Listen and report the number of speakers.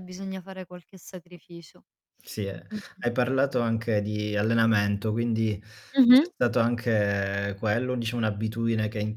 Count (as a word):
two